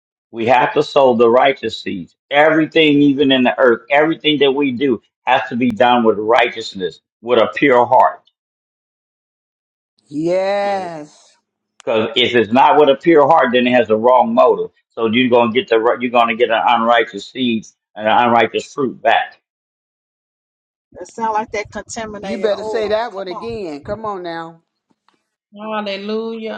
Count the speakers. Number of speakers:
four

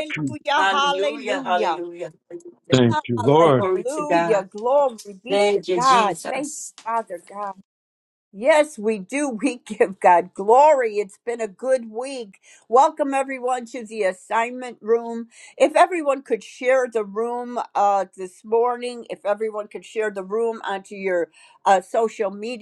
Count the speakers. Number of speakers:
three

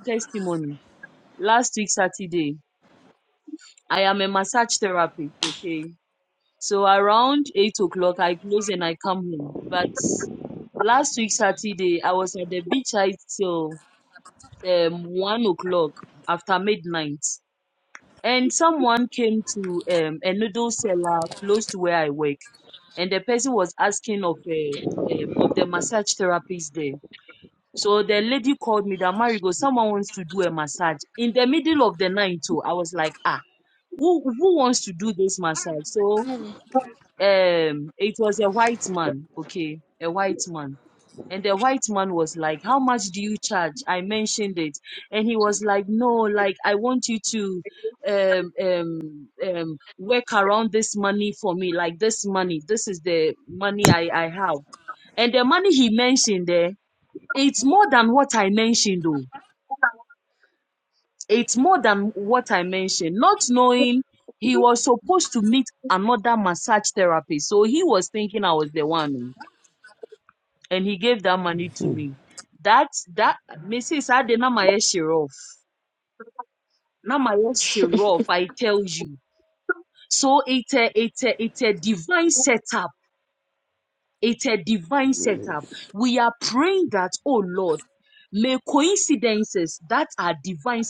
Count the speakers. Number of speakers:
one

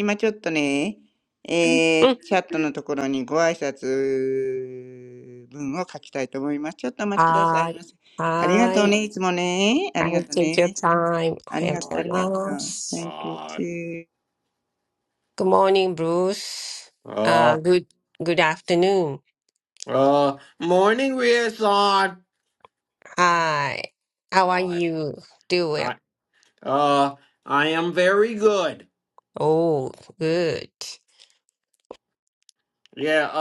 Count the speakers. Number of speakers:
three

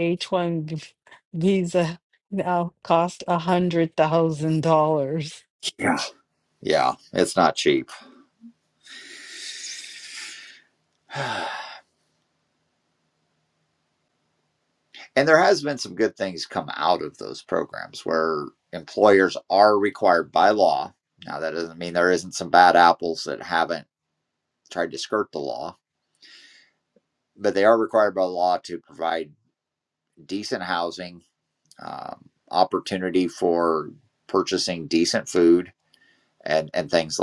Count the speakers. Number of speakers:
two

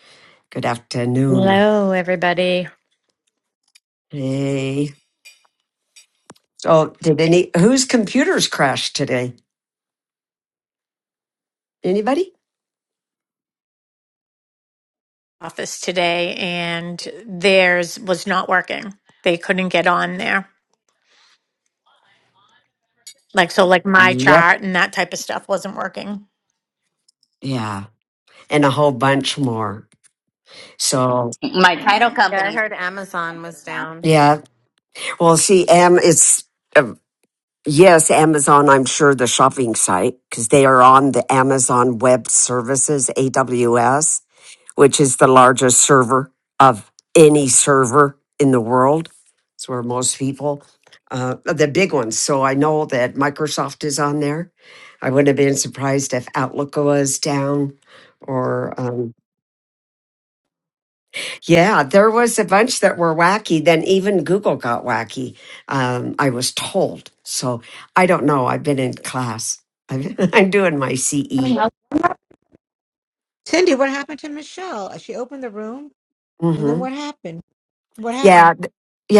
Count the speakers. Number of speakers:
five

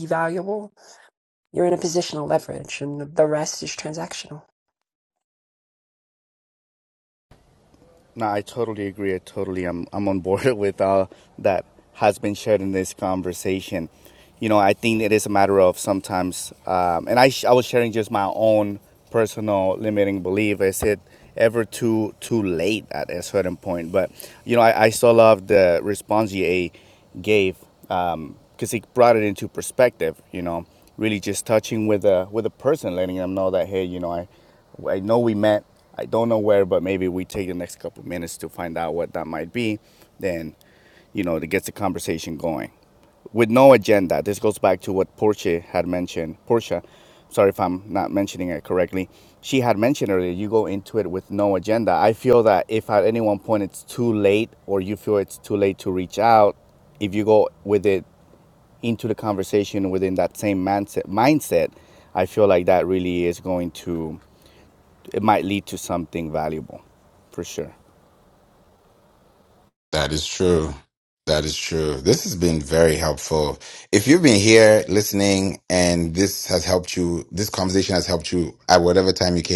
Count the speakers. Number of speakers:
three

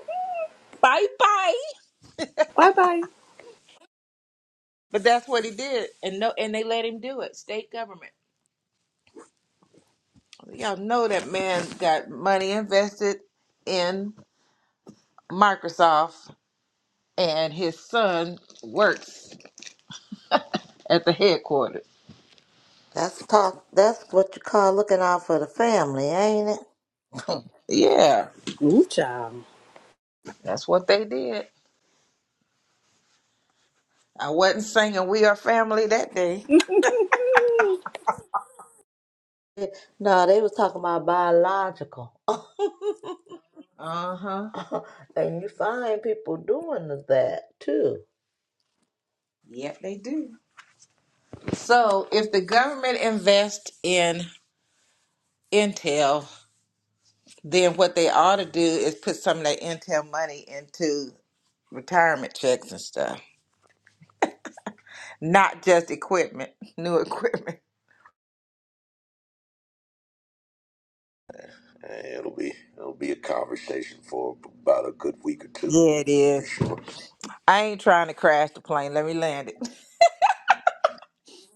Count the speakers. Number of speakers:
four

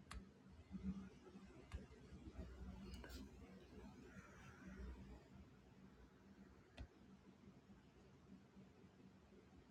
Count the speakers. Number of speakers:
zero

